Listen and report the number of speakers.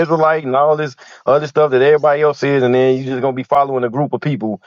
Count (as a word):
one